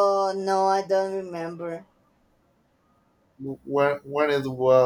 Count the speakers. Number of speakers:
two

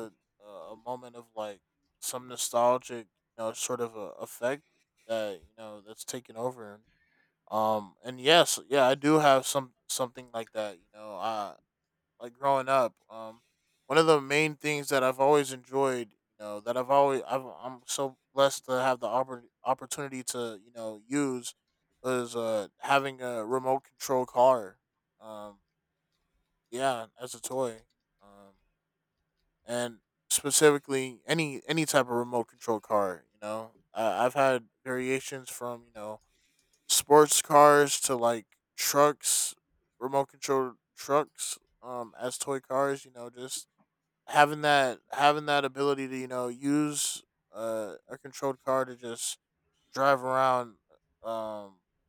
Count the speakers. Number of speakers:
one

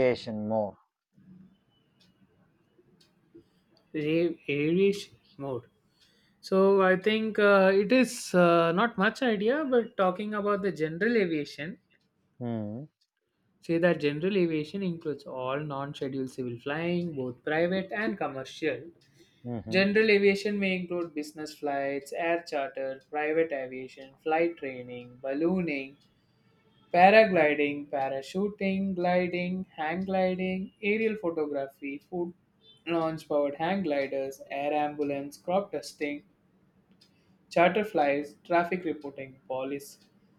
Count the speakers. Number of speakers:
two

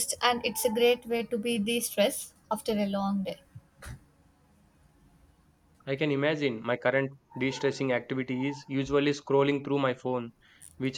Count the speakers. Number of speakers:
two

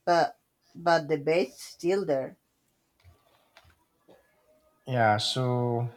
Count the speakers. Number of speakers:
two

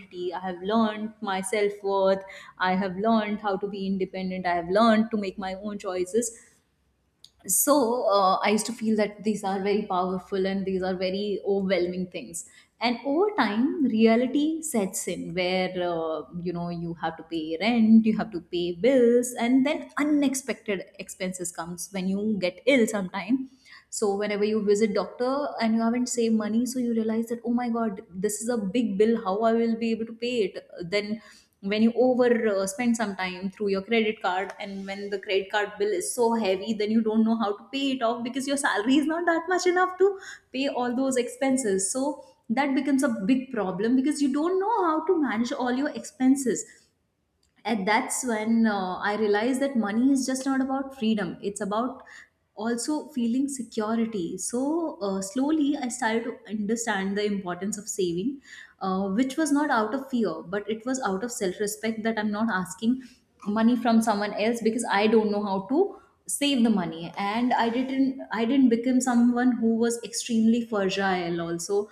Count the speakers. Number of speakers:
one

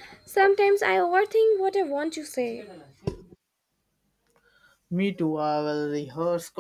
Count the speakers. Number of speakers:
two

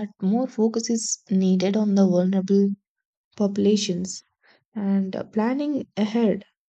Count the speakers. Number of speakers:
one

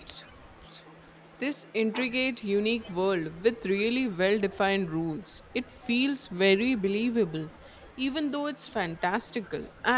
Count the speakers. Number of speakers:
one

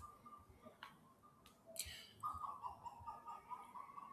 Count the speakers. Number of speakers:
zero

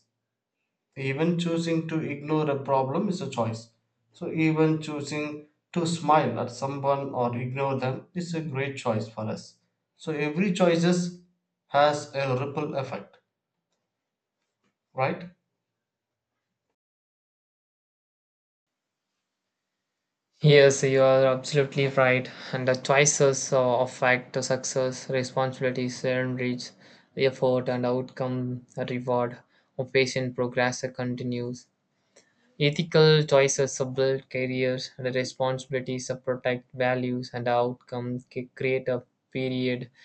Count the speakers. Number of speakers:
two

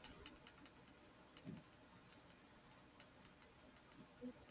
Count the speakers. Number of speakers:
zero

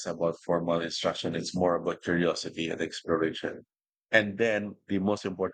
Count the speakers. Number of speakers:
one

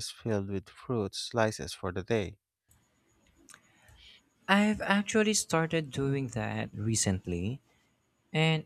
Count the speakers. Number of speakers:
two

